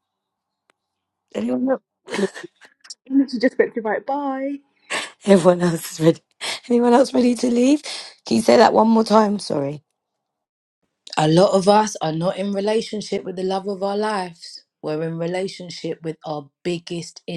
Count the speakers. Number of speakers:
3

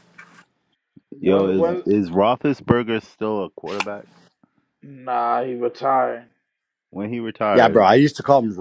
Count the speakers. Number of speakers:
3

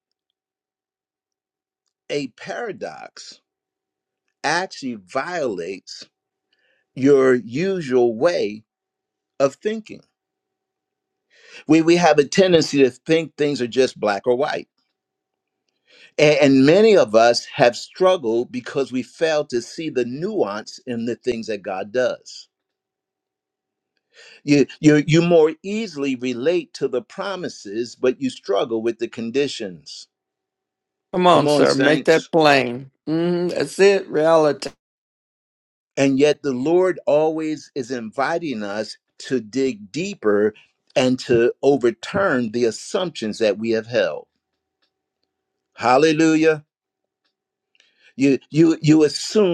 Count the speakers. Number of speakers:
2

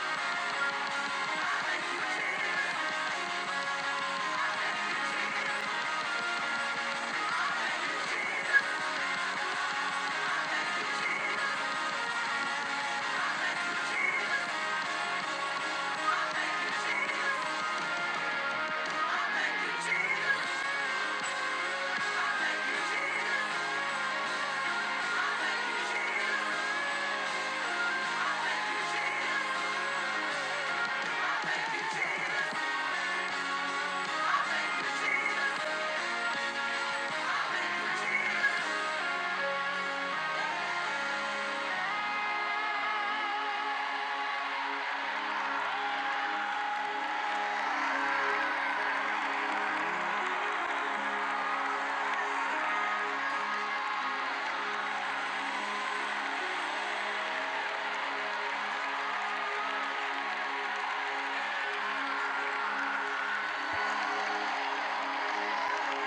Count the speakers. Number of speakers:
0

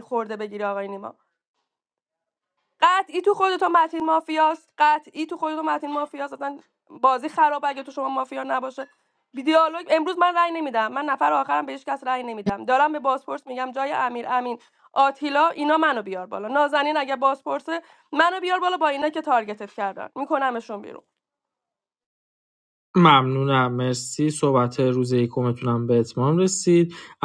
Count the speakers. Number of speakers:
2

